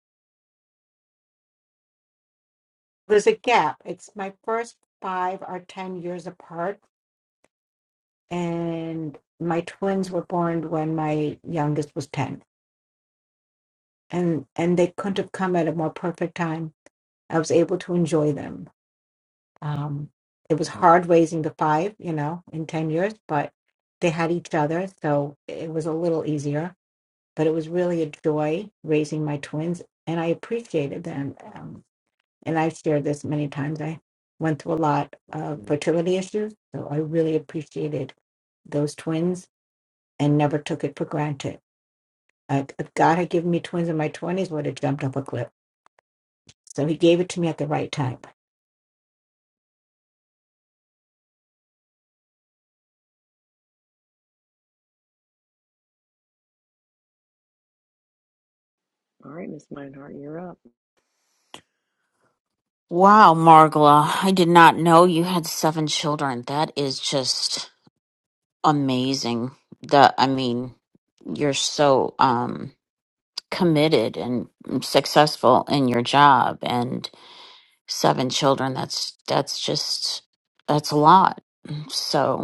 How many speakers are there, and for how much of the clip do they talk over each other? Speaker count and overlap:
3, no overlap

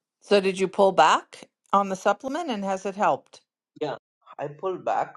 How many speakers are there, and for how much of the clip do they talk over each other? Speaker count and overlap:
2, no overlap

